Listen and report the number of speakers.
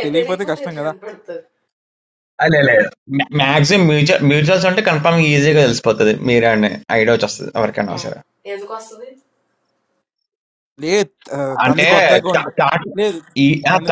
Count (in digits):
3